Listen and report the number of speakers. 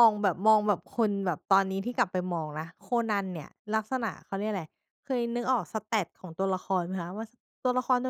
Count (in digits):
1